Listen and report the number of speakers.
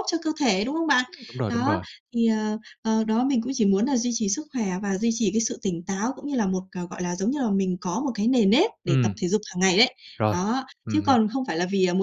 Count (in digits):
2